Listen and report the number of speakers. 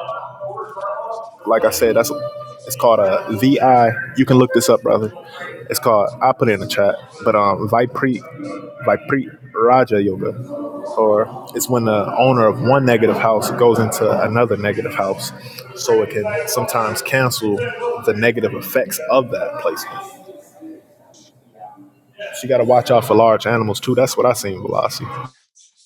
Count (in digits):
1